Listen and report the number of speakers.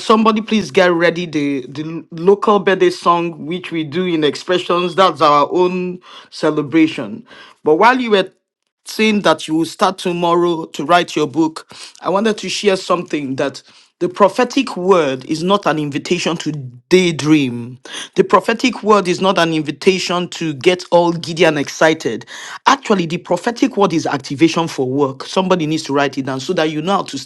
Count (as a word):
one